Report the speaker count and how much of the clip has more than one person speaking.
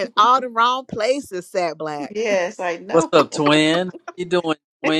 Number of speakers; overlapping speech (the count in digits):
3, about 11%